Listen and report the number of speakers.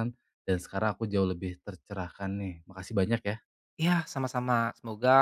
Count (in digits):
2